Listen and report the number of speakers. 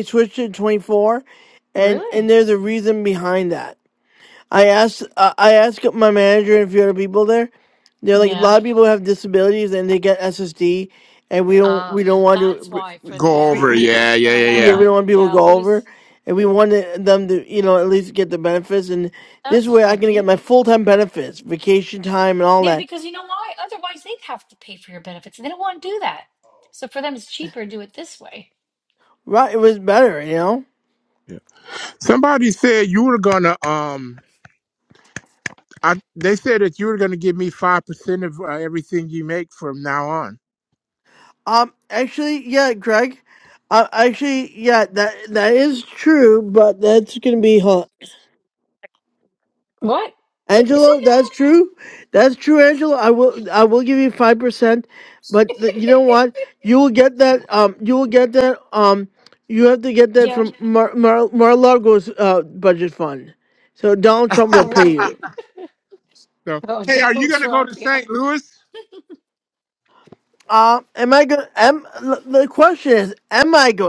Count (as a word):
three